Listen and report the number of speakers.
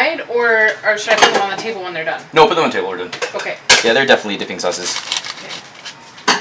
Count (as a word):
two